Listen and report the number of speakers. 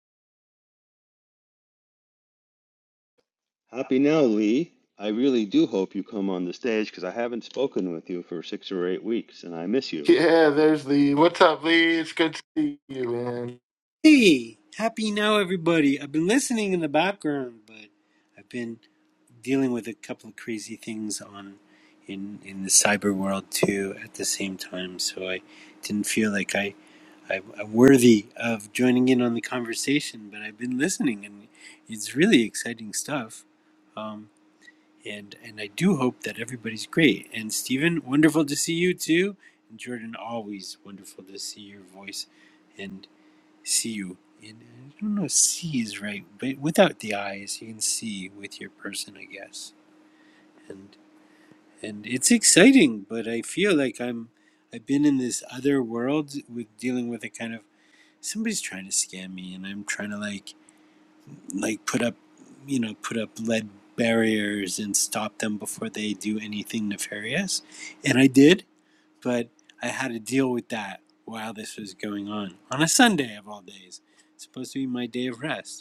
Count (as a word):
three